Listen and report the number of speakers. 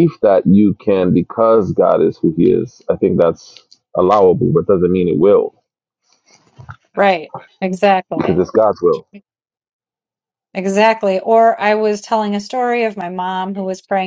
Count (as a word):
two